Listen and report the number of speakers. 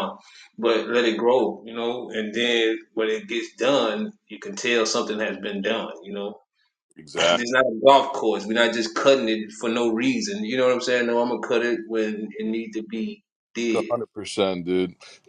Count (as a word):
two